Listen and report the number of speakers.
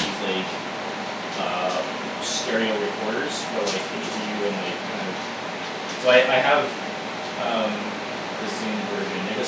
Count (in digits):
1